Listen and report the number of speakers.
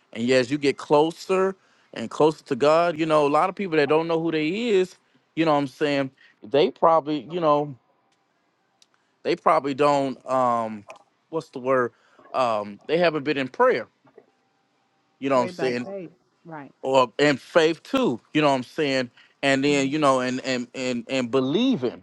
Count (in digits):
2